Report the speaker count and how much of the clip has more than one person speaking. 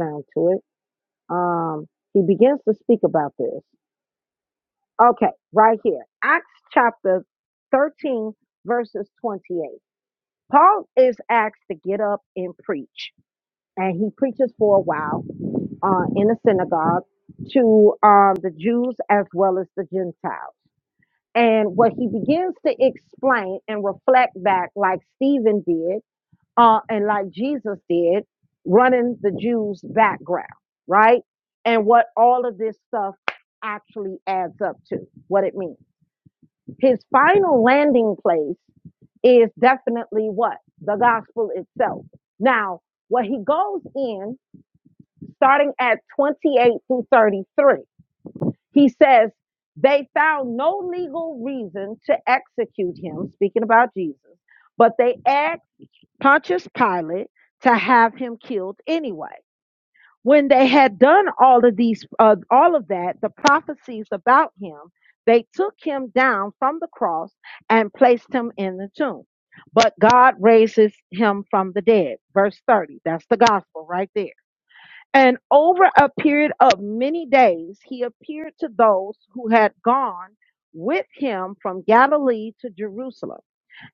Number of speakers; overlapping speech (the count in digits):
1, no overlap